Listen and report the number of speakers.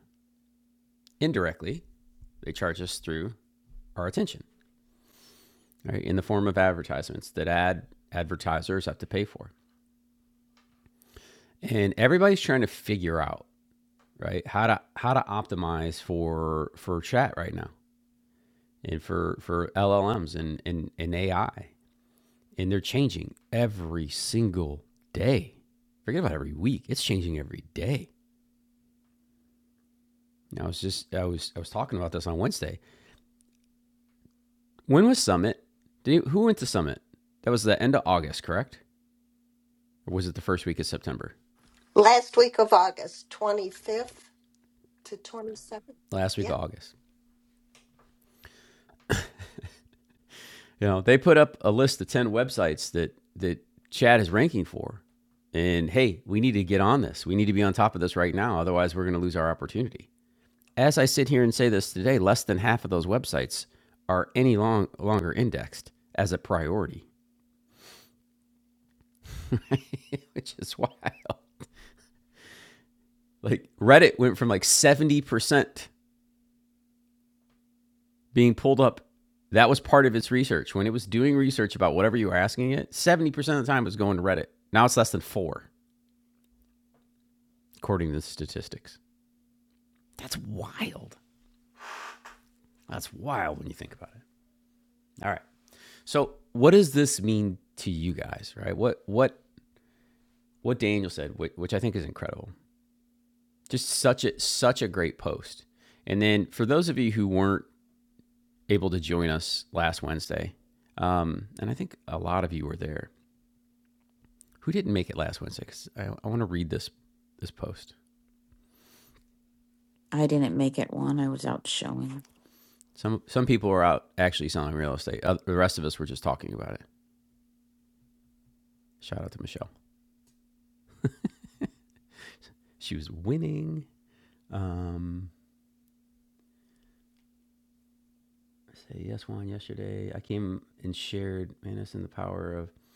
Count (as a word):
three